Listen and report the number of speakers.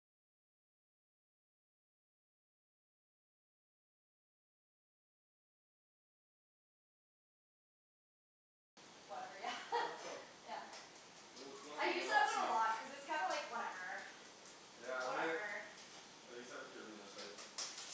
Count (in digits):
3